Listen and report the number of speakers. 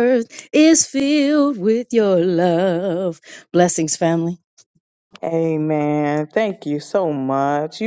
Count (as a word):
two